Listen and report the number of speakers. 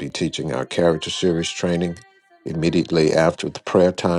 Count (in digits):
1